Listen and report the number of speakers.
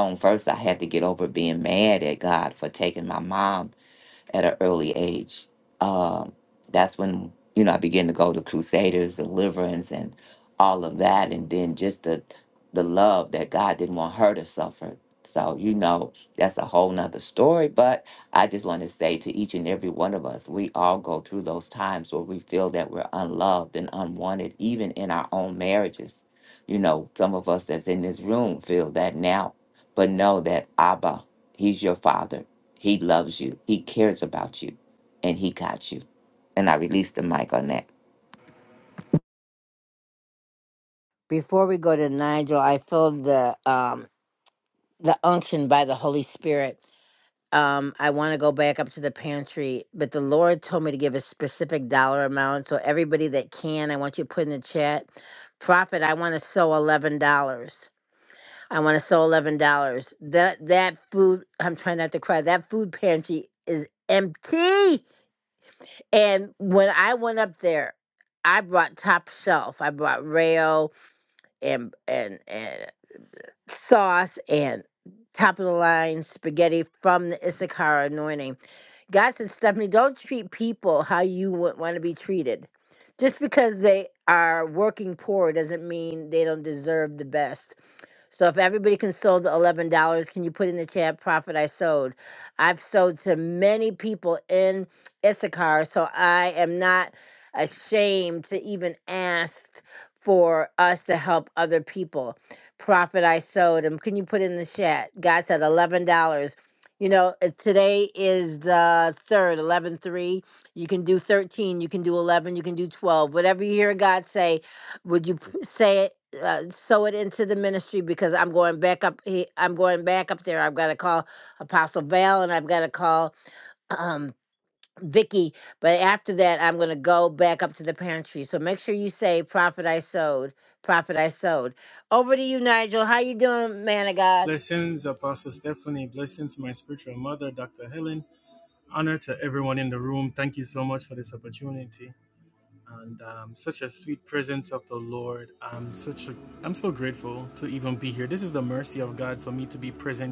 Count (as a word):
three